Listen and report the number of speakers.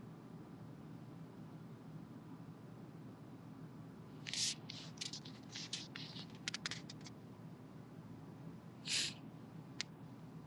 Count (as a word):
zero